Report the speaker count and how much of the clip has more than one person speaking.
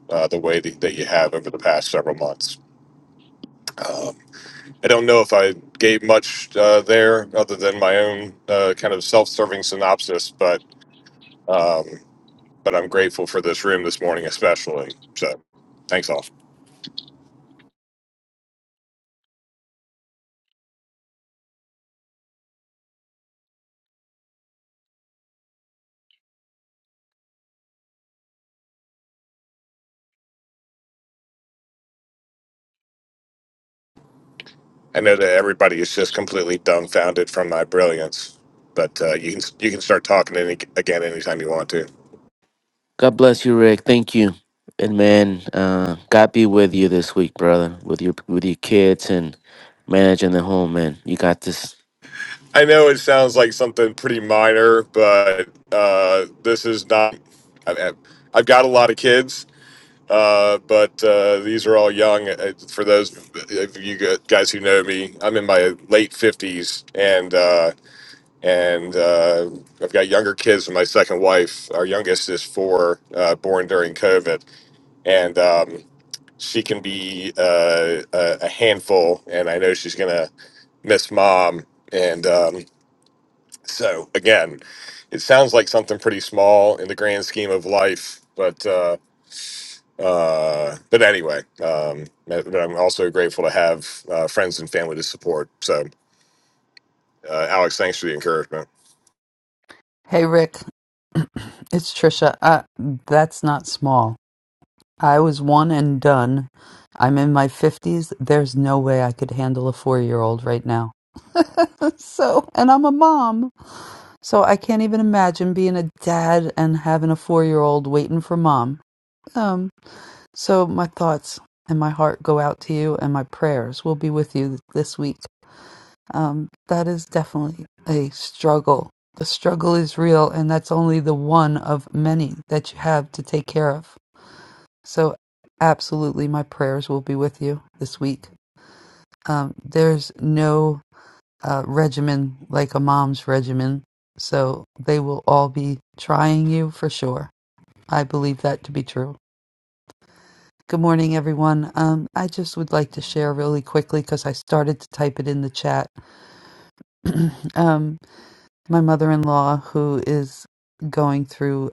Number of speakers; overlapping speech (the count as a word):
three, no overlap